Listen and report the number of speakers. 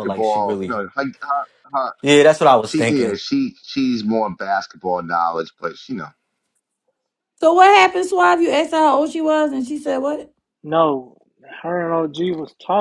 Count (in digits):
4